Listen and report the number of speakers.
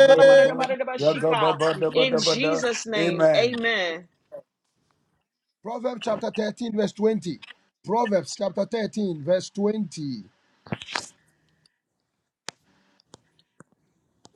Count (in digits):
3